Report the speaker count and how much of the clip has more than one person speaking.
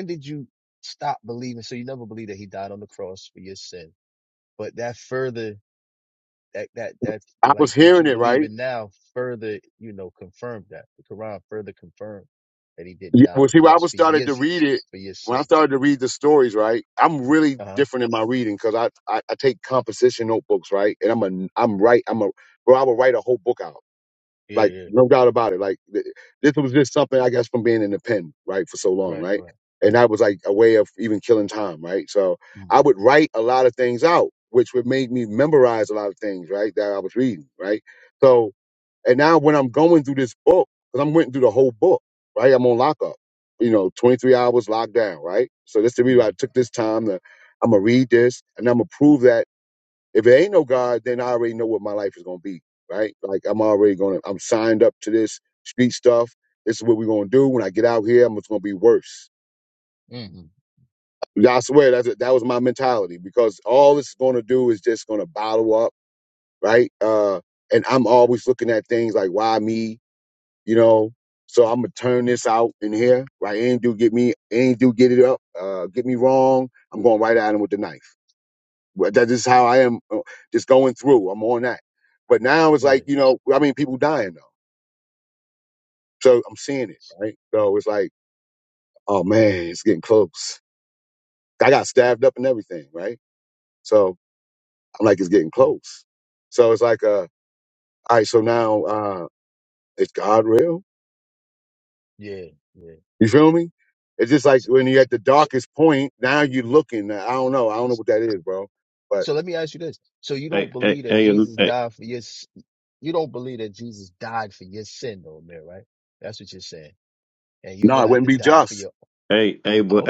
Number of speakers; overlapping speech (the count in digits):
3, about 5%